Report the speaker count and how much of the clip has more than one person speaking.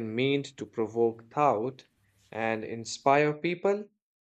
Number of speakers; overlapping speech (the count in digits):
1, no overlap